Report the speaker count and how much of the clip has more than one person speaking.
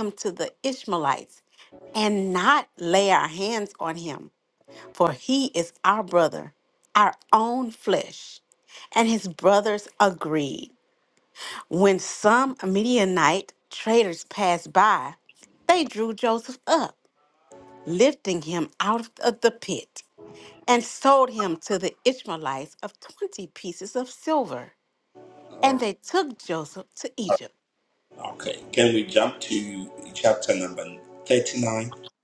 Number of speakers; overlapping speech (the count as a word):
two, about 1%